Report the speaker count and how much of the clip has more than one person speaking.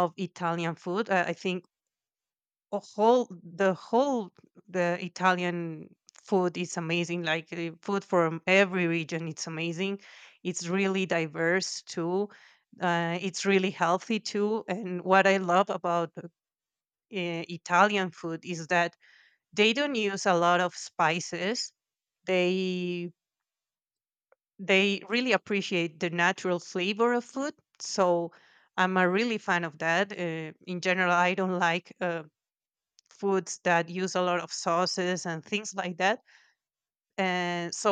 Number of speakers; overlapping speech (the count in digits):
1, no overlap